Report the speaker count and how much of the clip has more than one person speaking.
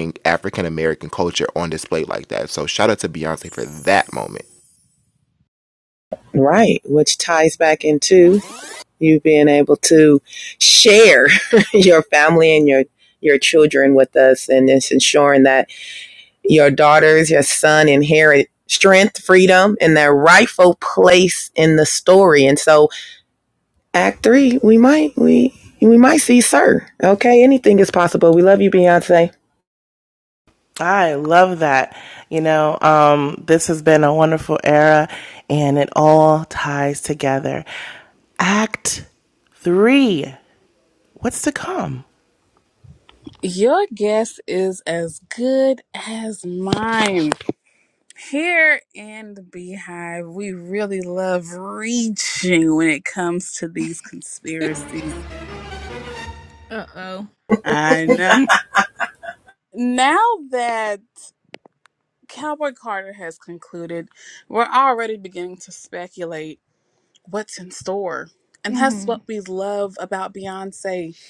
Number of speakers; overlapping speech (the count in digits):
5, about 1%